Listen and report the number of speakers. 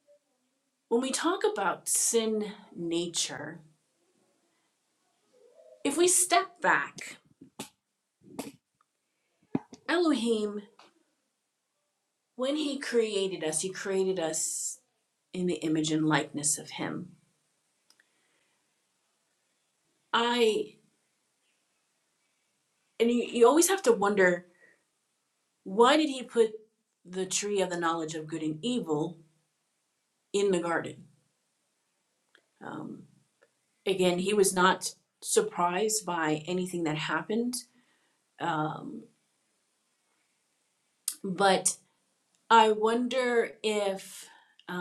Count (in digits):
1